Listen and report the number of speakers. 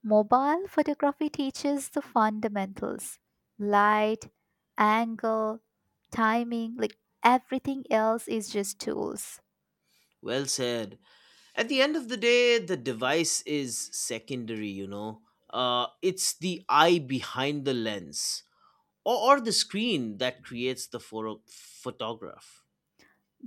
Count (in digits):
2